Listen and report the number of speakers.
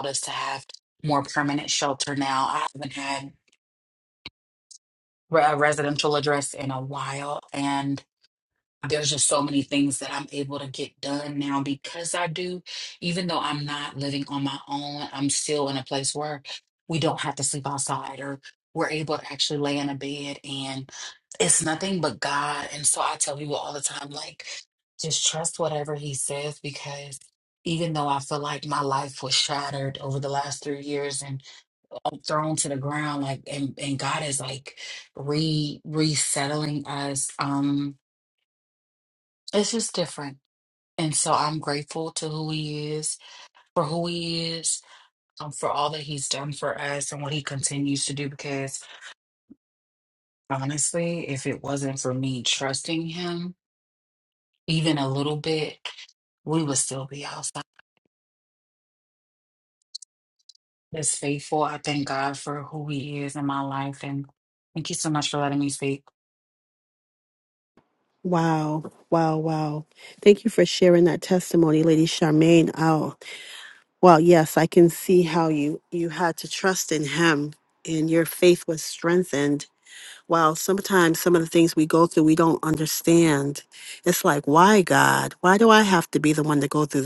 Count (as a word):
two